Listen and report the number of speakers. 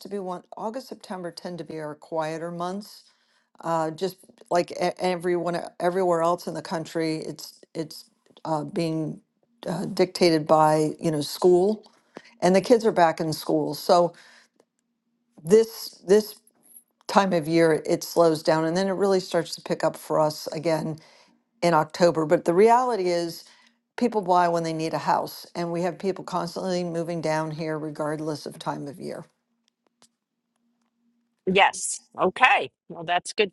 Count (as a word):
two